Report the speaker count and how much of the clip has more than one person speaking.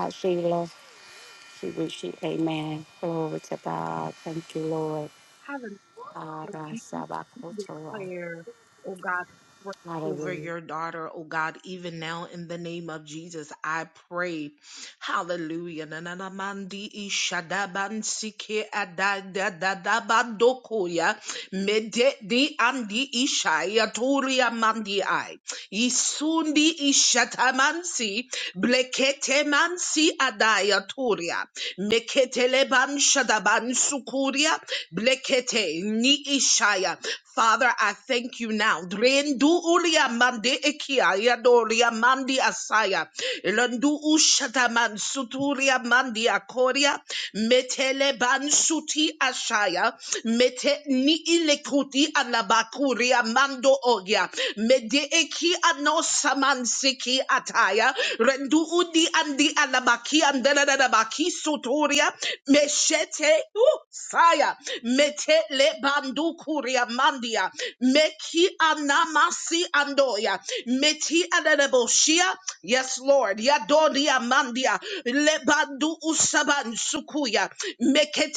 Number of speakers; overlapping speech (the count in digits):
2, about 2%